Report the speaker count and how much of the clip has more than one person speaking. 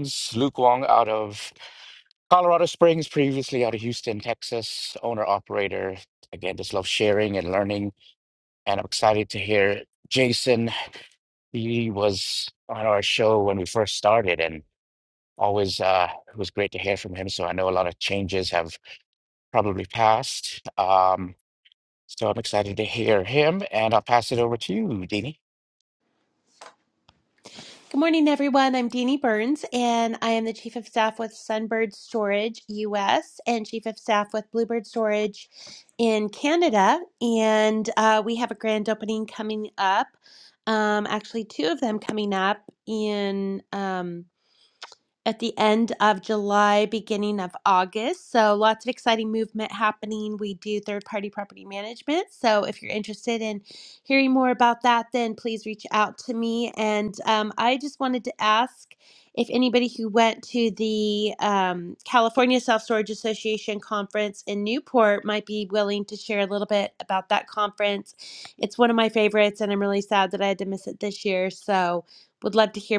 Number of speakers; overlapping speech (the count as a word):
two, no overlap